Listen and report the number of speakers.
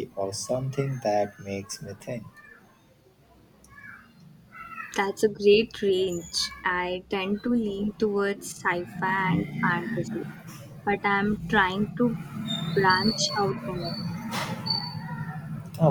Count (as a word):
two